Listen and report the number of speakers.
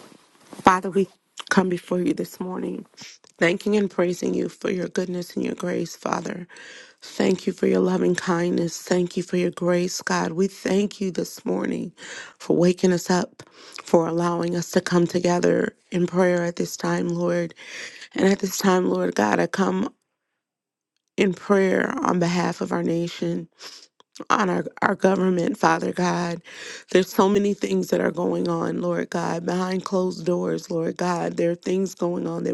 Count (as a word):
one